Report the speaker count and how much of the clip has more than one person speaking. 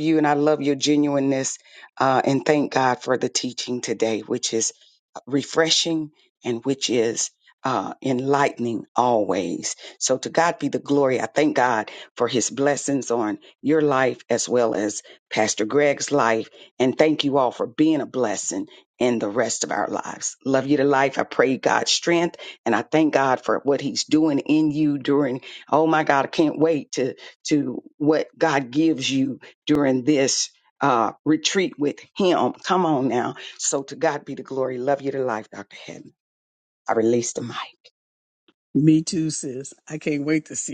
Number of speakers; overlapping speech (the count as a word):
two, no overlap